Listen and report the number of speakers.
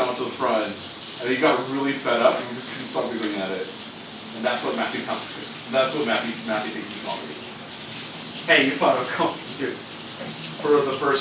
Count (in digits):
2